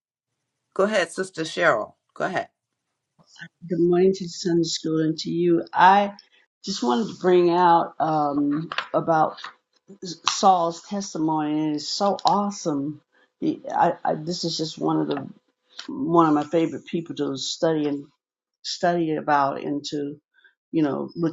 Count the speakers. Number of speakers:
two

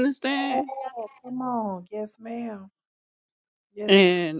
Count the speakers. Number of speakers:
two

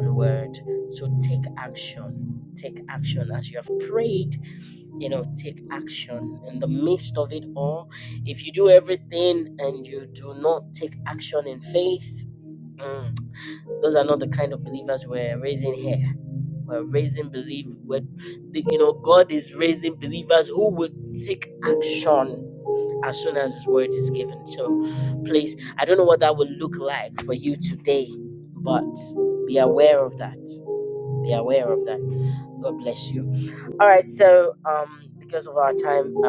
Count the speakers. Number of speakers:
one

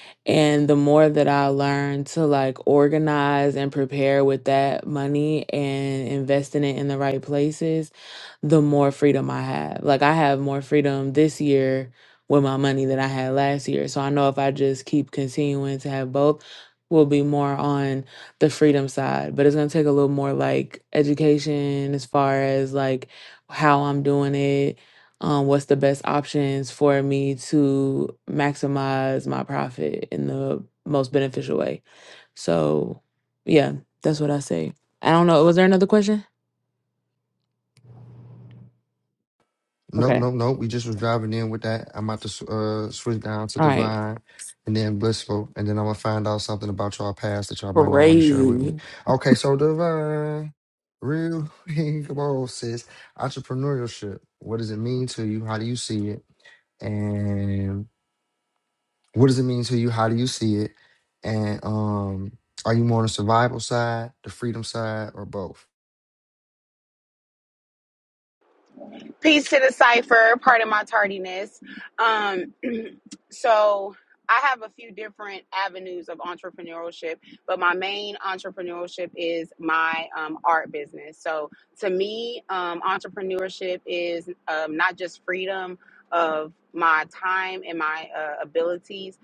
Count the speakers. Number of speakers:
three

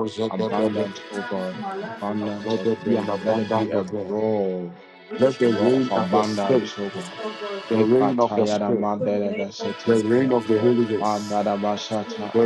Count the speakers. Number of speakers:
three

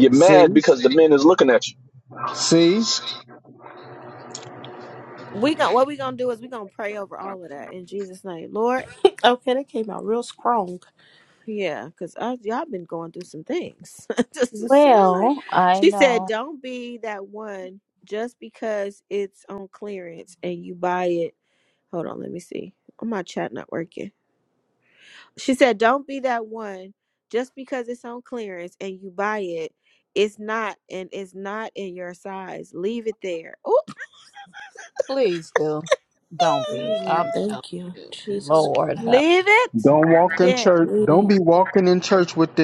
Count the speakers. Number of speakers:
five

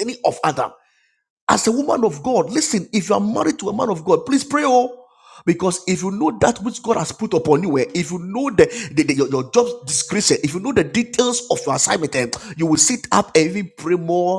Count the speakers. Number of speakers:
one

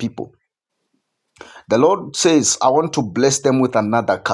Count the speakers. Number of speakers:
one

